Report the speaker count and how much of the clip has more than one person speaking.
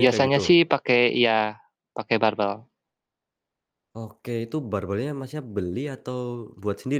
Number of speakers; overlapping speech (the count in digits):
2, about 8%